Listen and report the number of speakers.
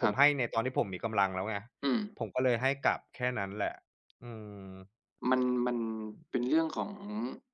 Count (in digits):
2